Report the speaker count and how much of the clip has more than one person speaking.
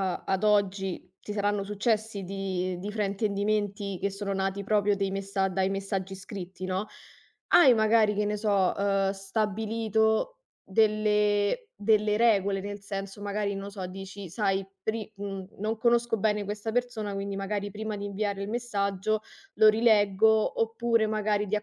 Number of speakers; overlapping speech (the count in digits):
1, no overlap